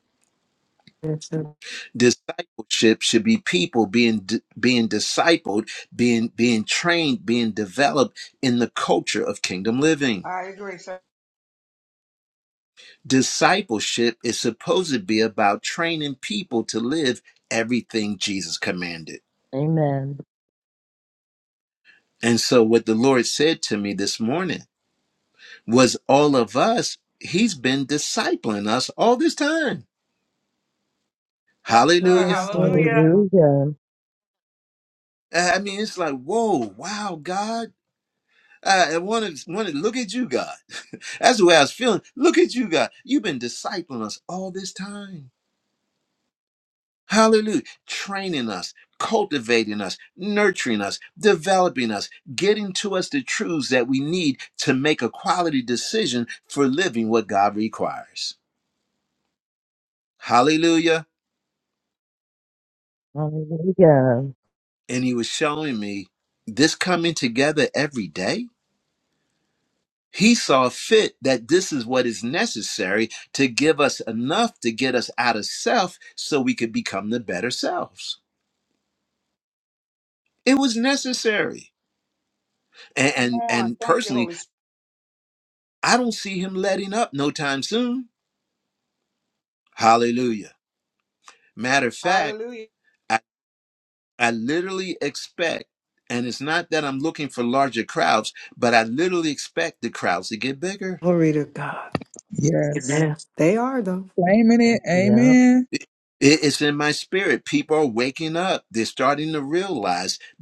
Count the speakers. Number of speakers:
five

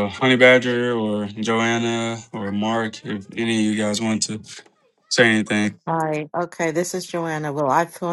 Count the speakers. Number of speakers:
two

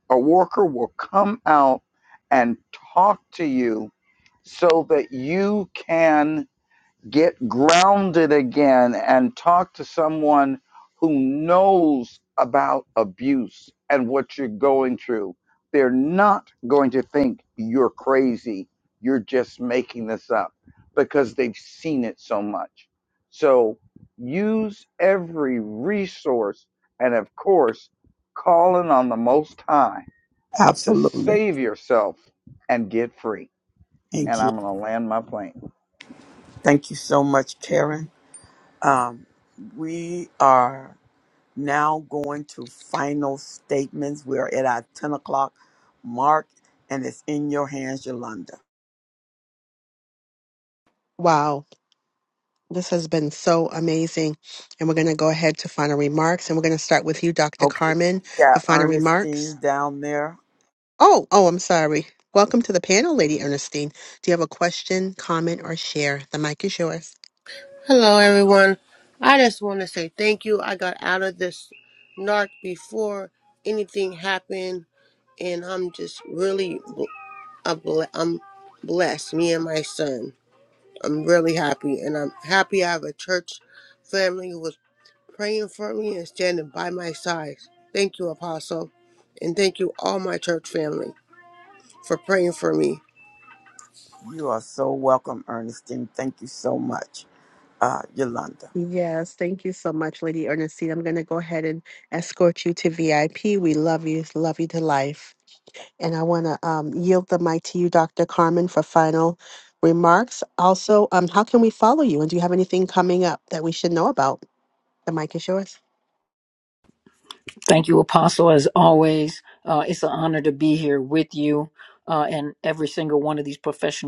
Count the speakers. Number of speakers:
five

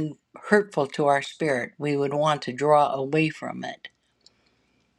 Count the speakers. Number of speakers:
one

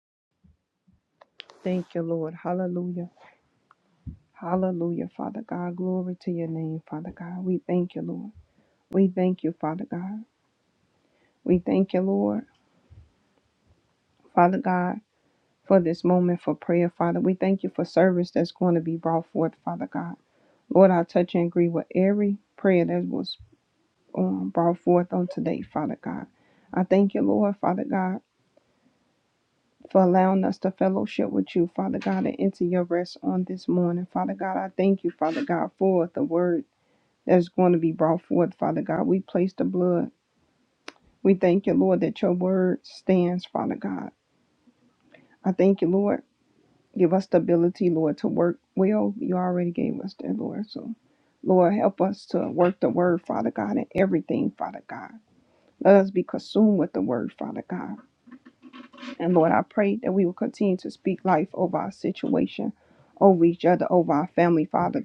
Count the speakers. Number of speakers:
one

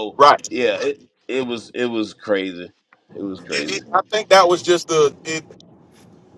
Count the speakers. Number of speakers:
two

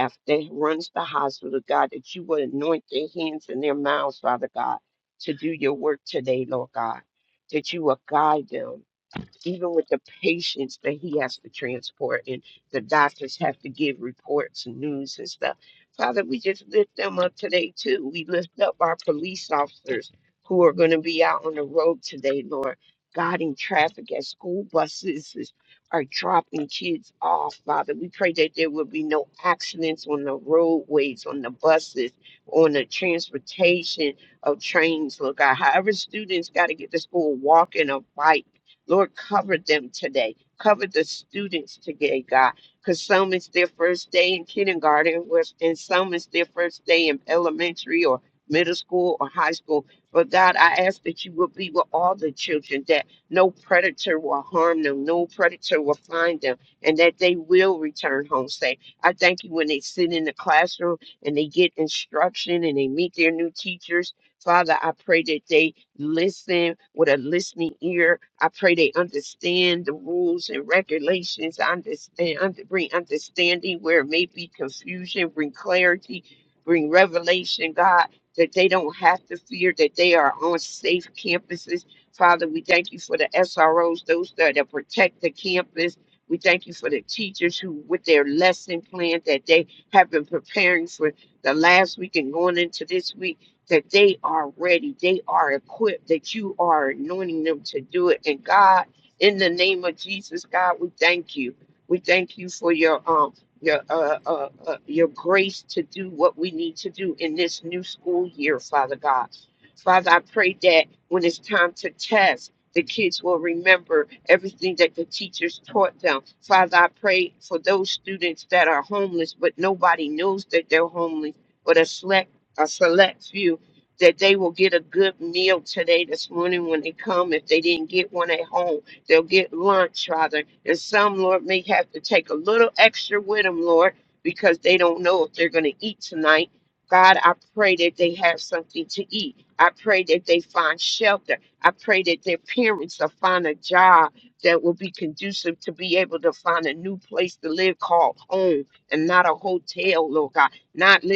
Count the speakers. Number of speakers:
one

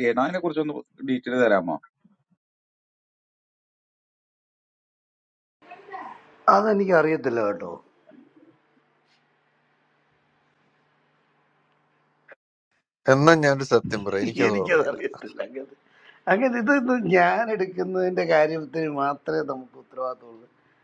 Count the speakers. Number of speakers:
three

